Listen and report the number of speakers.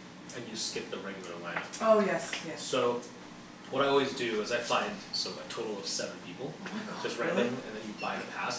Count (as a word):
two